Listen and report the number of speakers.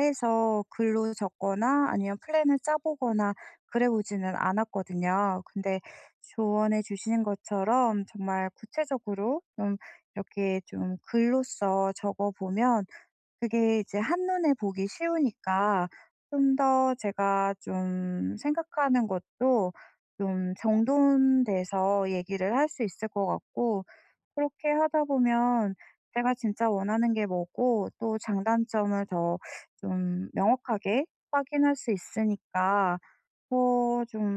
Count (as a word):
one